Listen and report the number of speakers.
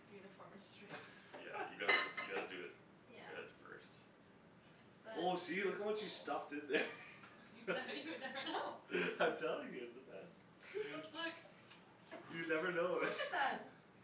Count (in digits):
4